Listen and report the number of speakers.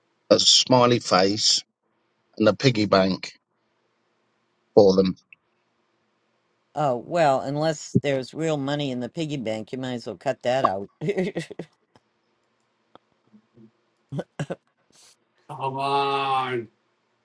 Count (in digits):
3